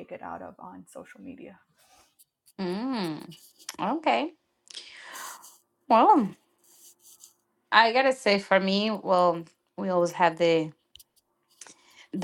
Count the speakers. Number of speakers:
2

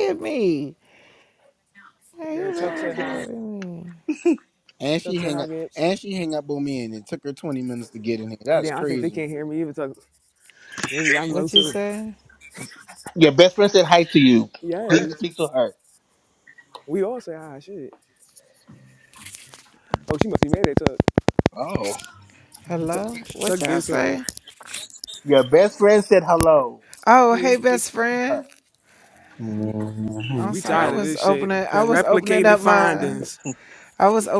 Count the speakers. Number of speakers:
4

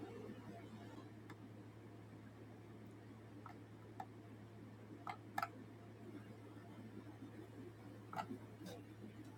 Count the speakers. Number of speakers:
0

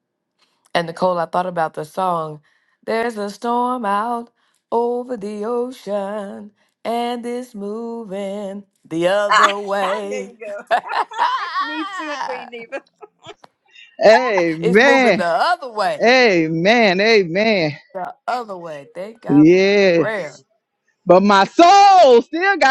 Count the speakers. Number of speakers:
3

